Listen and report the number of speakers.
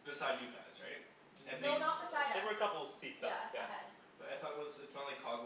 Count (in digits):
3